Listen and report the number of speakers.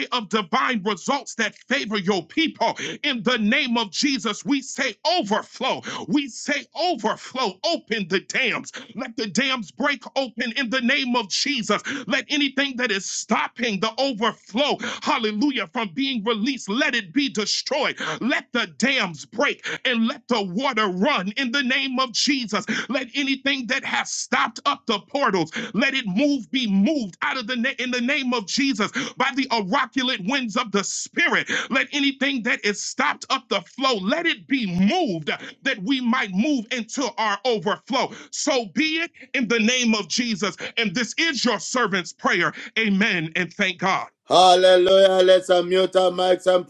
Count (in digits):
2